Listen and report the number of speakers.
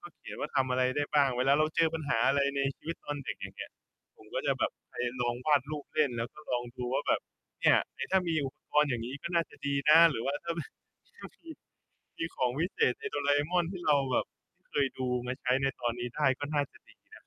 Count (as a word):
one